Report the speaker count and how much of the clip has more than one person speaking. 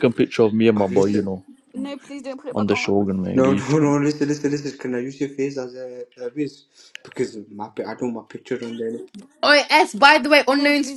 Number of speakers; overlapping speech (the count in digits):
4, about 19%